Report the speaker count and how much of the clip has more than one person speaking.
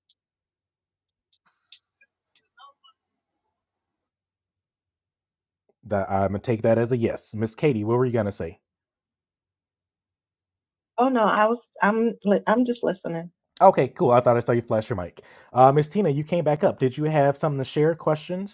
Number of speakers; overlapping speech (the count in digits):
2, no overlap